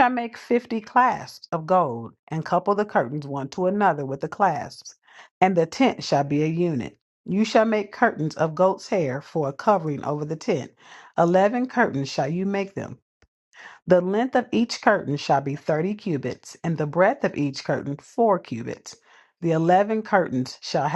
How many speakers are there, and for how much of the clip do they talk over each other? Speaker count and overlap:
1, no overlap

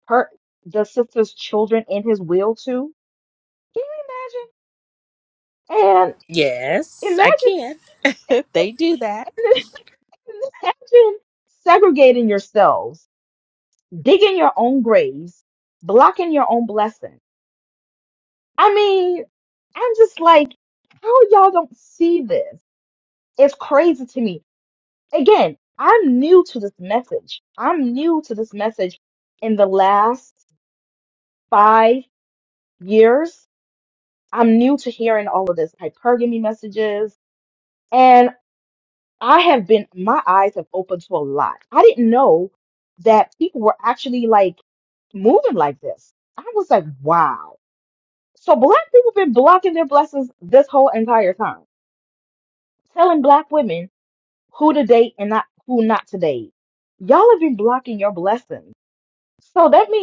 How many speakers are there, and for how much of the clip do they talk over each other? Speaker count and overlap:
2, about 1%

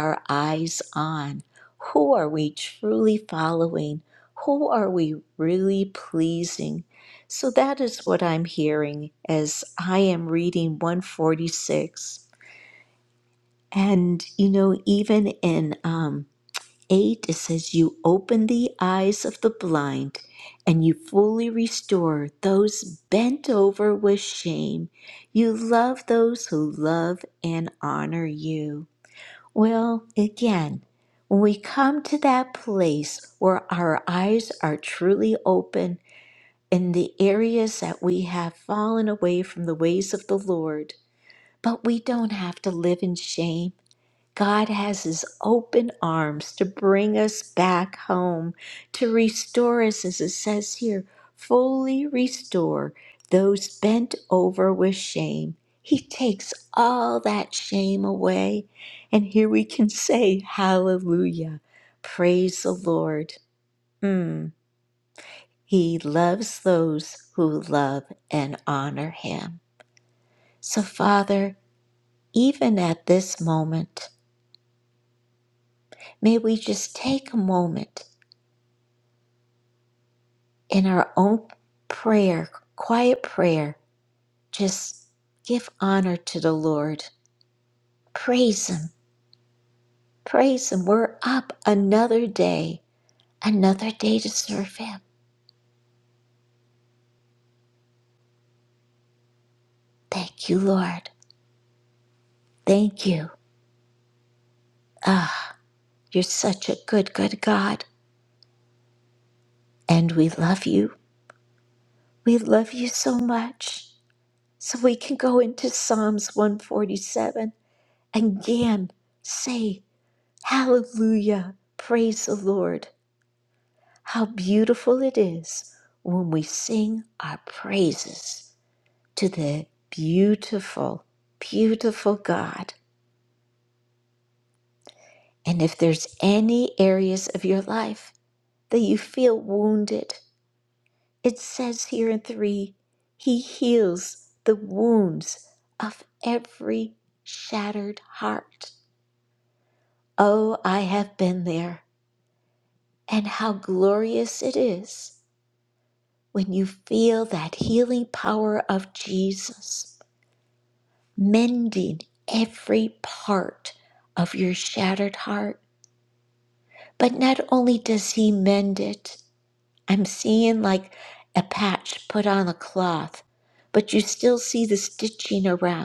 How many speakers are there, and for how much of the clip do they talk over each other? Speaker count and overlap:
1, no overlap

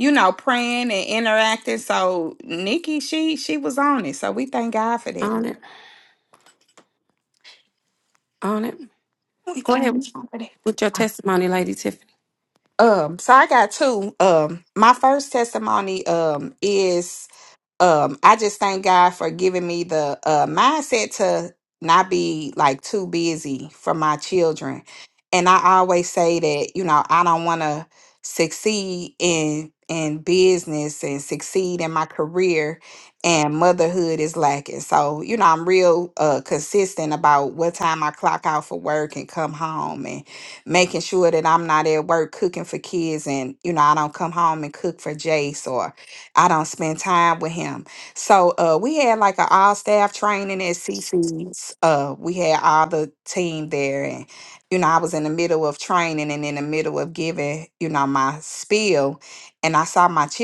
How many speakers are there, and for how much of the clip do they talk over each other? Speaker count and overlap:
2, about 1%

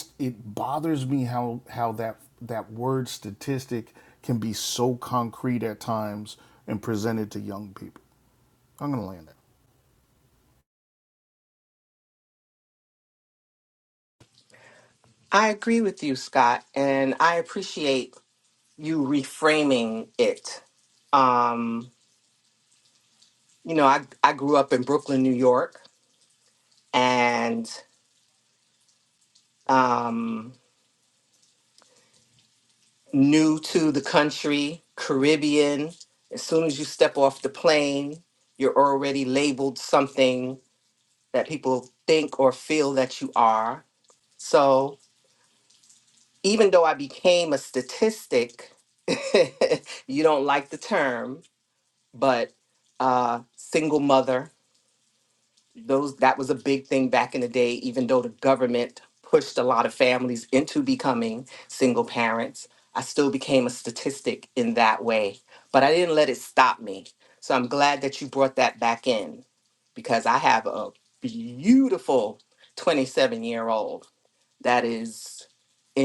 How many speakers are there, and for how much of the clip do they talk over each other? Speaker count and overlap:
2, no overlap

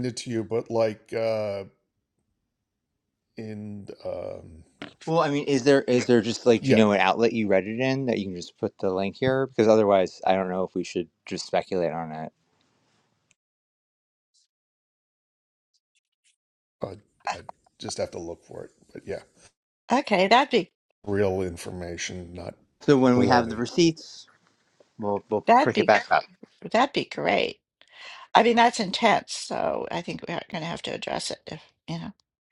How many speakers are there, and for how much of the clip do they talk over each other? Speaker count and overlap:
3, about 4%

